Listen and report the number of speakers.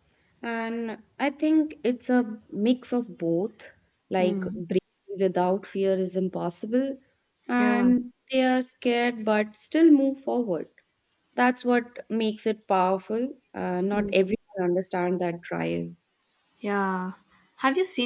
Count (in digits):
2